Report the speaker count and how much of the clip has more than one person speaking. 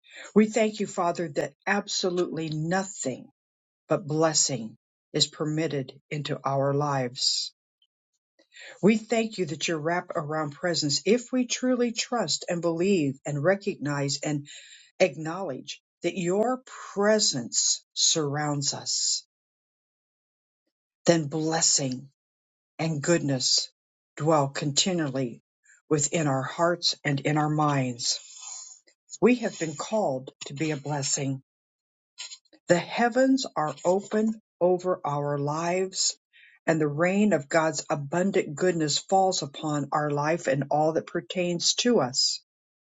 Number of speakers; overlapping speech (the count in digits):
1, no overlap